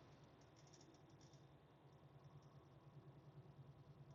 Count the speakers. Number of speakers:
0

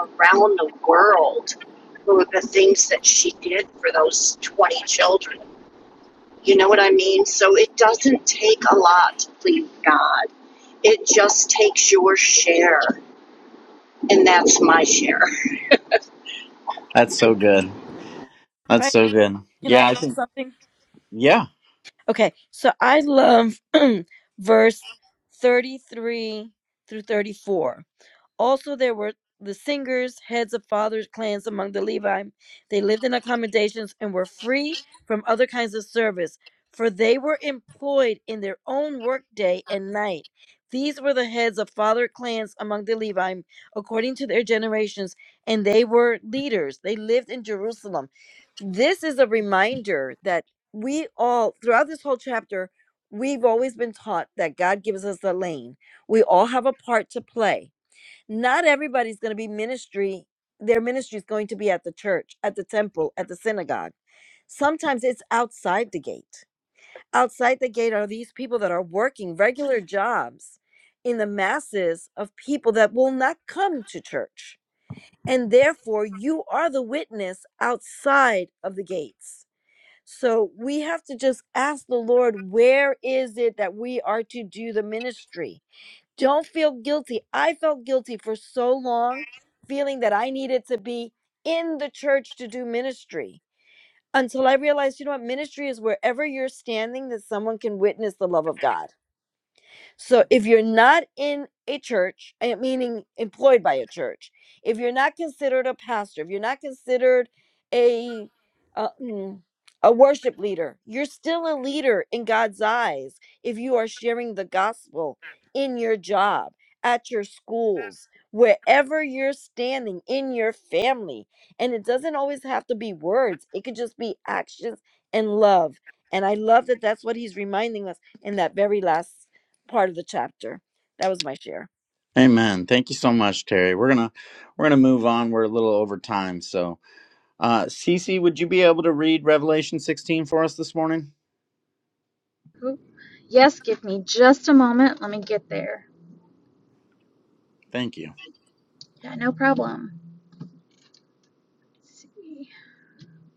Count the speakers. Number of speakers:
4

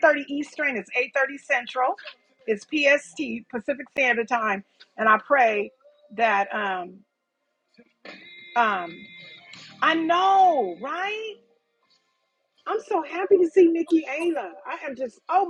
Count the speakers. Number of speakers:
1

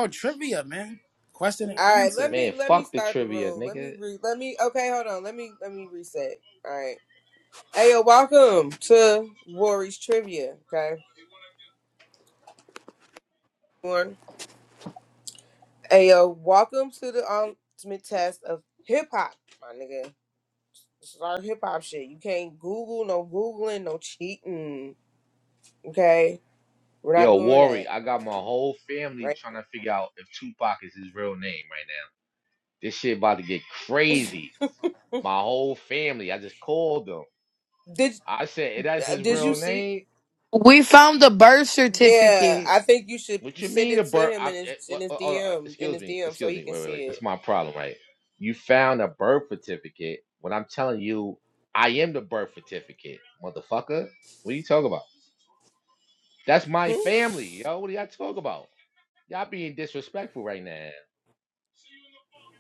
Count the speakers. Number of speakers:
4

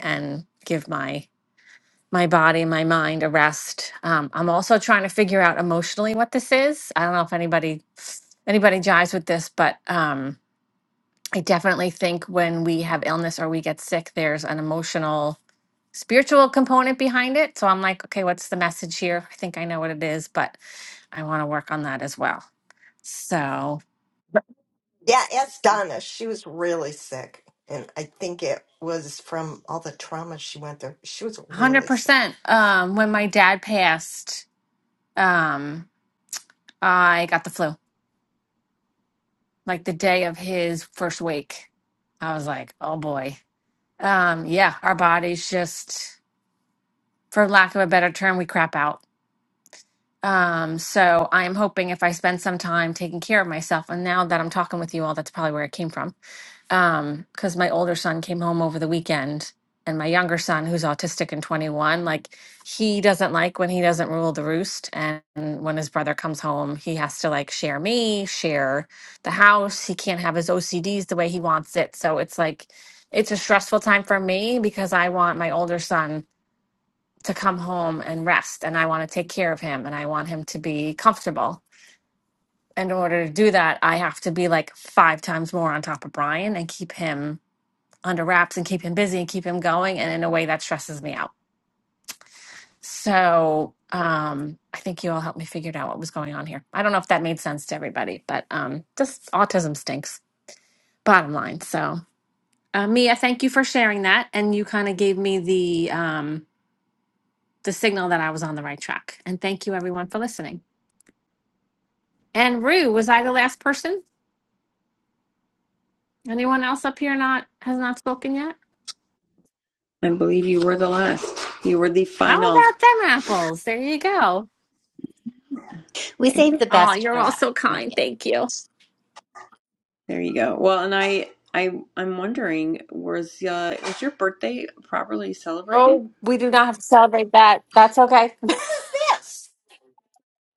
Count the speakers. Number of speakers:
4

